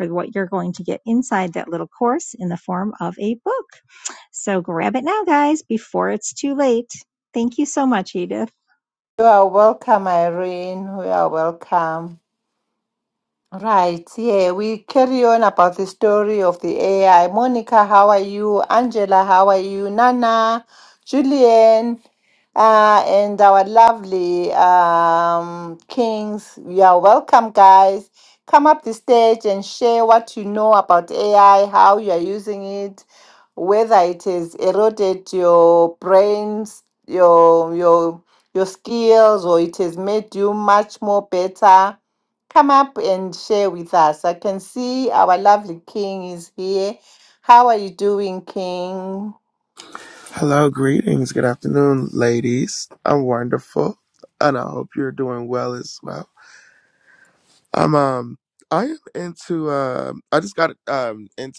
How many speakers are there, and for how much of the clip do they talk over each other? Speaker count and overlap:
three, no overlap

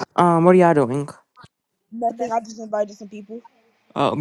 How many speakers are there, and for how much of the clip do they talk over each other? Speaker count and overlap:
two, no overlap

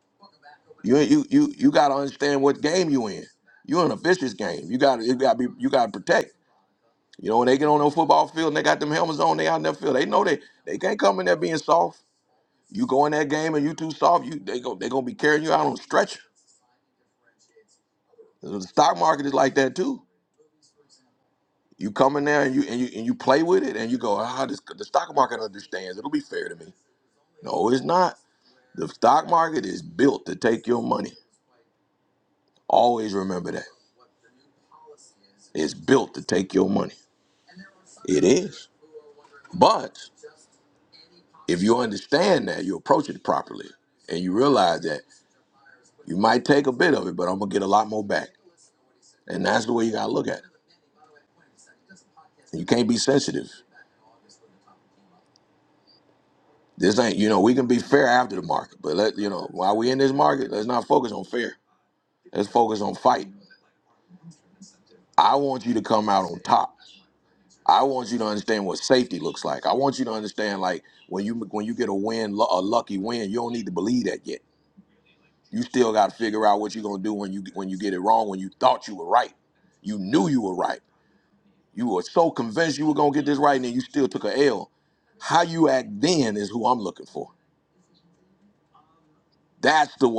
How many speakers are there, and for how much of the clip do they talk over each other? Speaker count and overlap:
one, no overlap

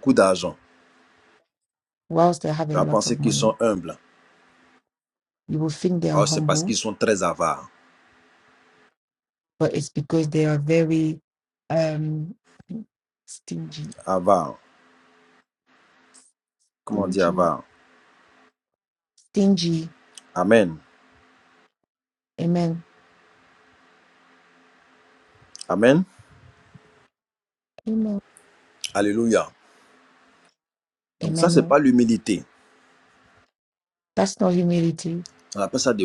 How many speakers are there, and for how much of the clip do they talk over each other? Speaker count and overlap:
two, about 7%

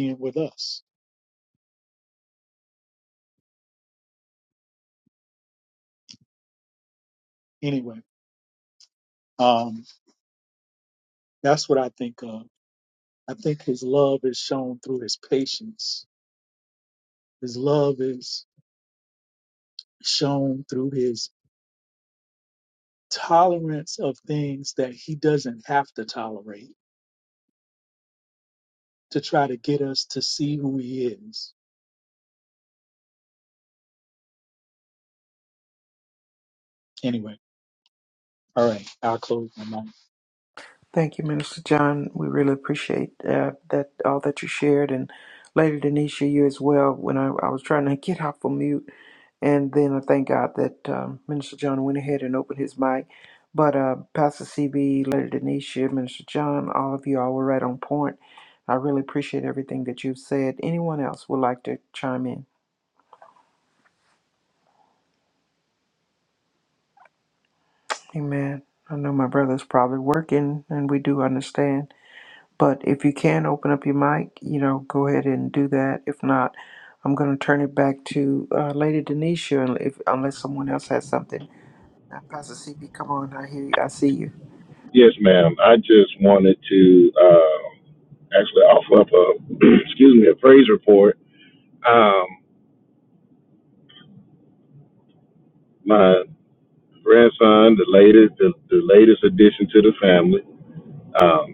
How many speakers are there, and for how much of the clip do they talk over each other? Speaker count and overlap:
three, no overlap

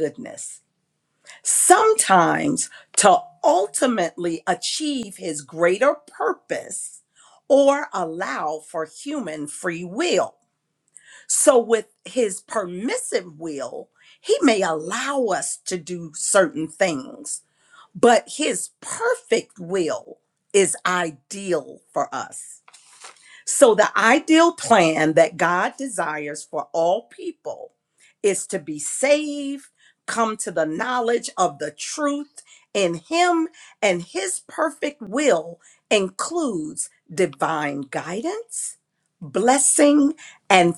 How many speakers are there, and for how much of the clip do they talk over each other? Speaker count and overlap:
one, no overlap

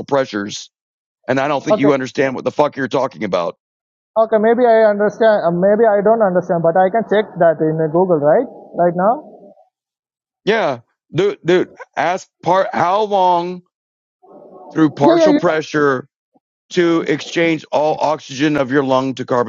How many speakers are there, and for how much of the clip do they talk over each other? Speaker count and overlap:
two, about 4%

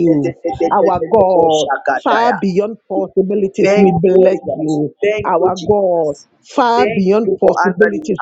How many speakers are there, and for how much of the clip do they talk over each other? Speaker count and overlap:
two, about 55%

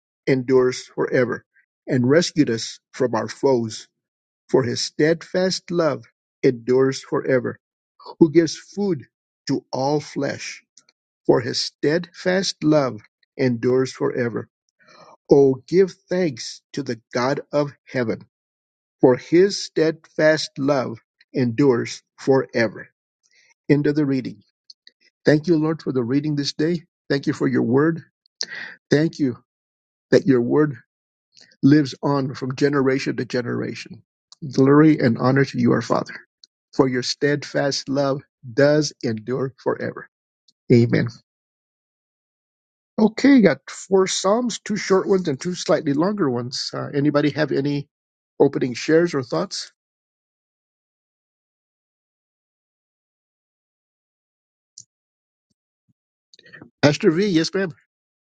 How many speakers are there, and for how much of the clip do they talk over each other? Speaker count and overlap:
one, no overlap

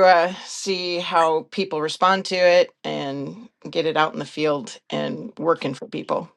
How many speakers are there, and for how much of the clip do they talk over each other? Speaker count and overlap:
one, no overlap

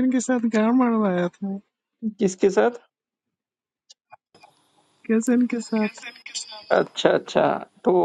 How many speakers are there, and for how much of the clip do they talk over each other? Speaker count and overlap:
two, no overlap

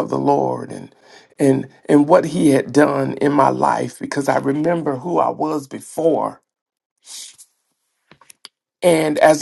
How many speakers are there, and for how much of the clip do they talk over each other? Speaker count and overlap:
one, no overlap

